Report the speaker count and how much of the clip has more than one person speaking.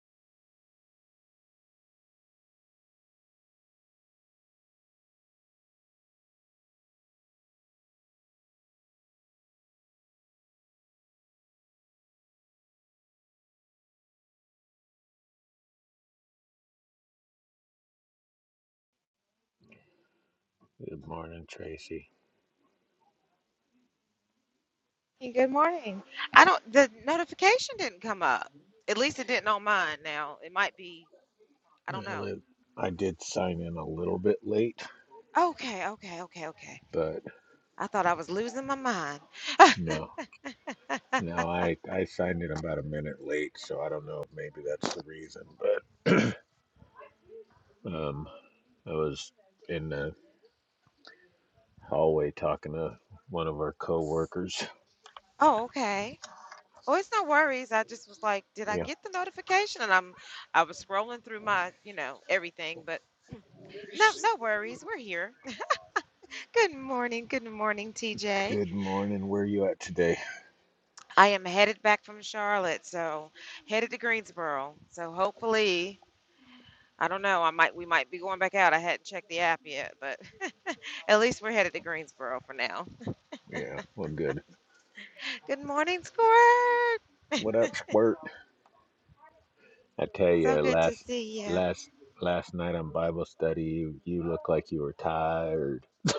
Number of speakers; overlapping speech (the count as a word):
two, about 2%